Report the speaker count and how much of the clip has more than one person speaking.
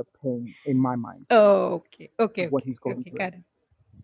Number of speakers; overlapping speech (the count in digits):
2, about 20%